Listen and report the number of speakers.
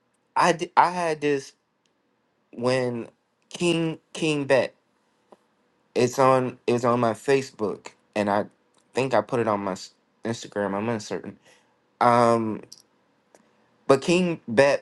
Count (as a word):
one